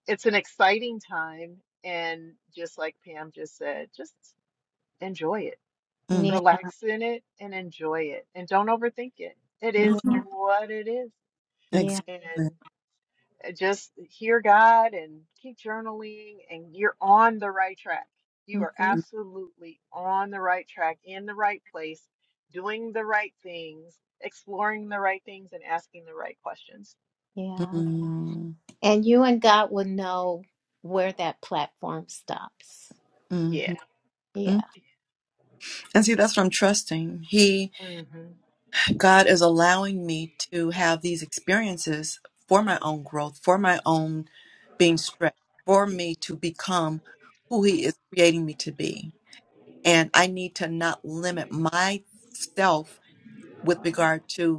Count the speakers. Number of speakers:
3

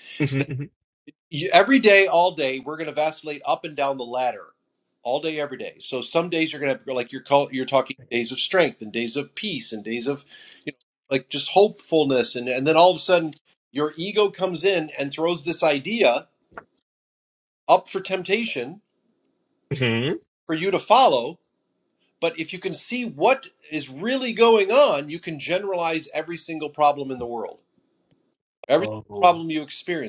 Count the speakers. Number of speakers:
2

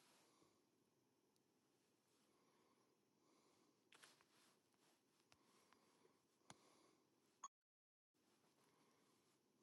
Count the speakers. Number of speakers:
0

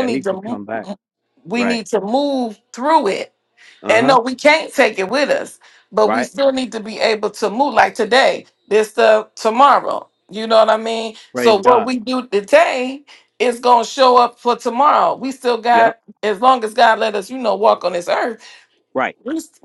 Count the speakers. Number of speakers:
2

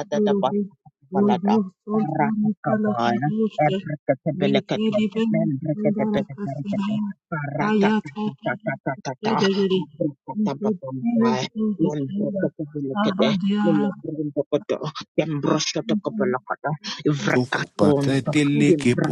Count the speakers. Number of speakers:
3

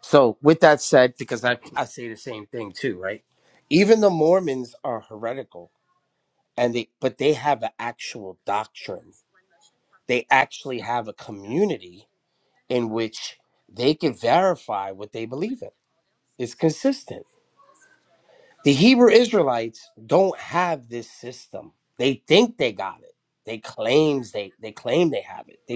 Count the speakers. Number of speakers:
1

